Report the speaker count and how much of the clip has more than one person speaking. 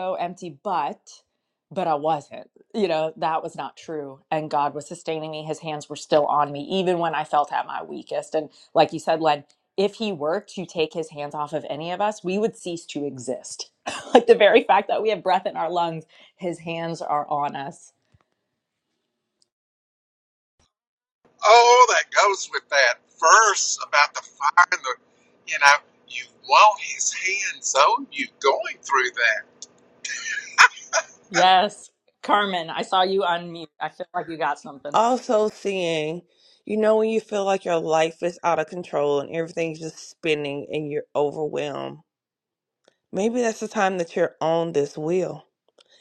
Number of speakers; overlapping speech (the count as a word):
three, under 1%